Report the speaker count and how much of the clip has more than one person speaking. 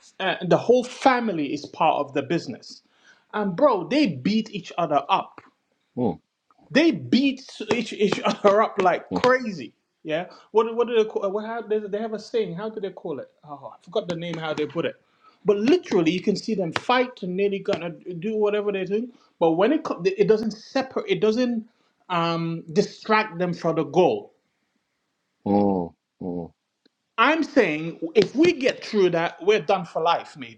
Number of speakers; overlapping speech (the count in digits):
2, under 1%